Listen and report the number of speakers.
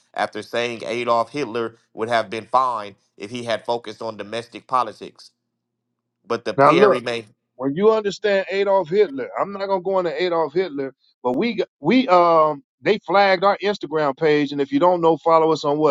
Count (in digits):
2